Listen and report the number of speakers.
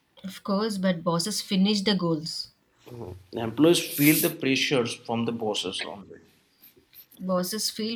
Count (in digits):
2